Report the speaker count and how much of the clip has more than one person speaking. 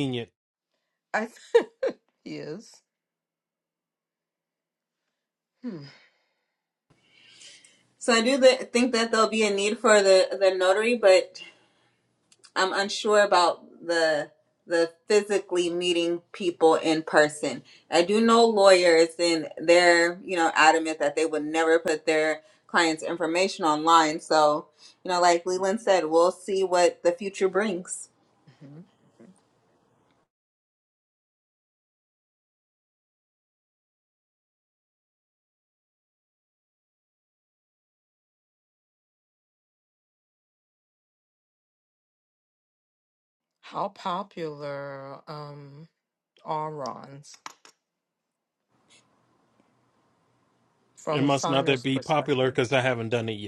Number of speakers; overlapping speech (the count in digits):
3, about 3%